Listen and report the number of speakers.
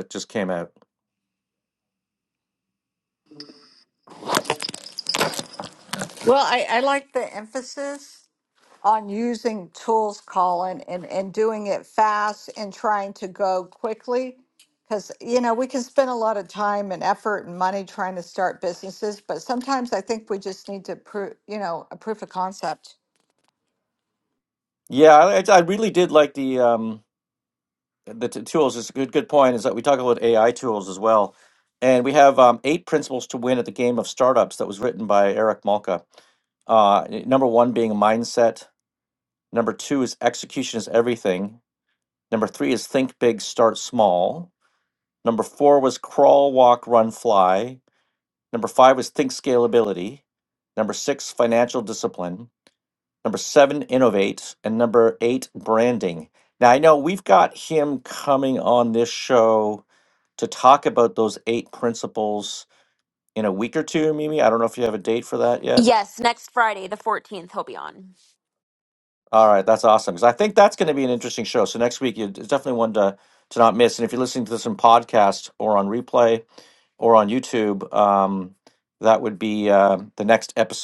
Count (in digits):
3